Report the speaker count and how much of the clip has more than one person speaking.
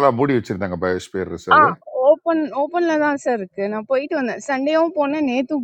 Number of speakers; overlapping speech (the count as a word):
two, about 2%